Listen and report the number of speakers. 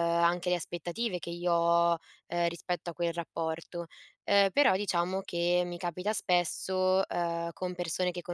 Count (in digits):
1